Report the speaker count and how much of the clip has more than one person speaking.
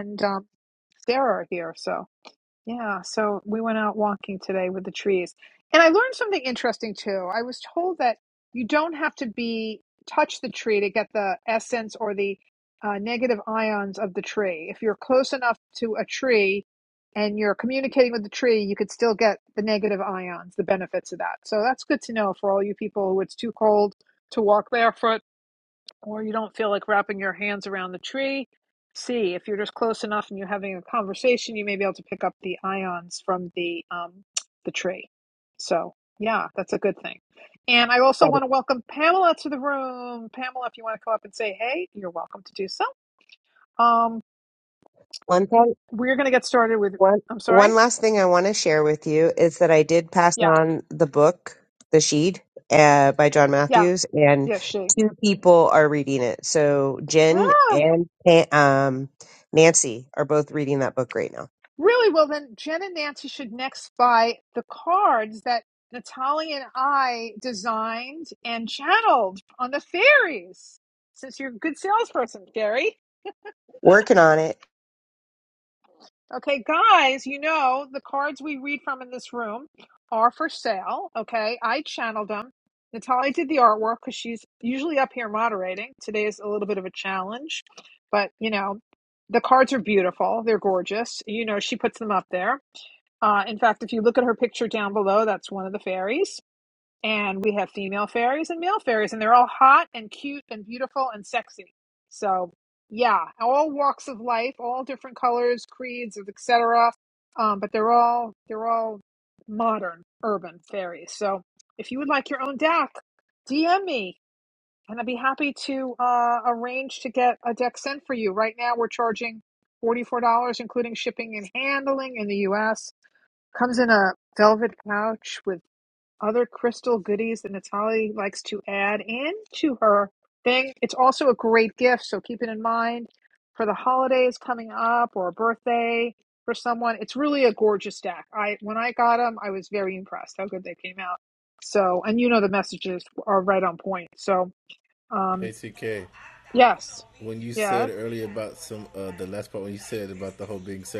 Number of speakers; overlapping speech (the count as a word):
three, about 1%